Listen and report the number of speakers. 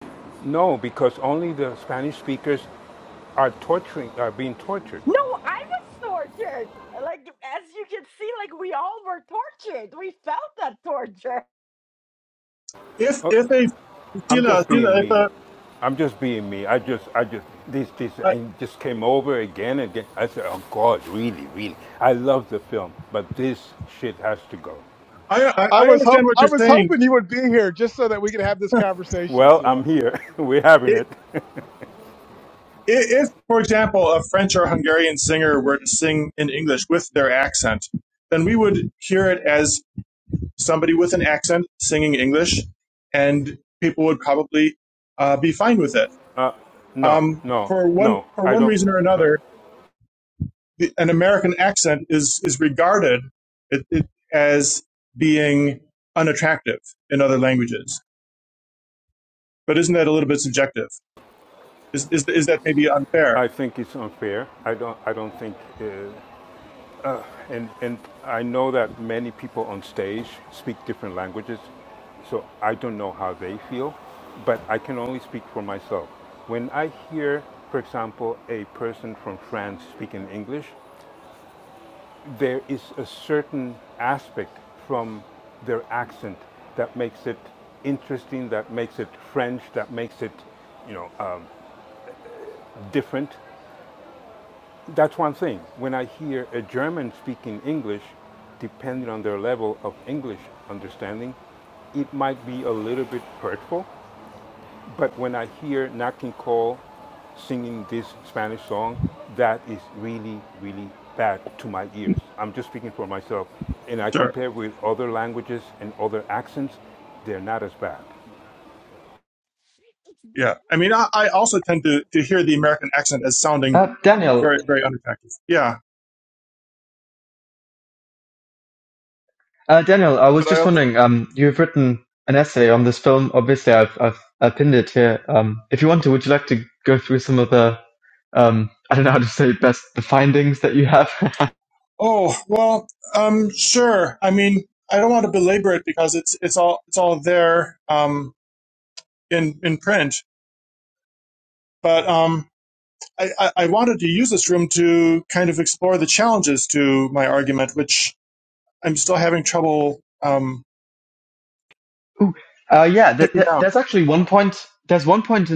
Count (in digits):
5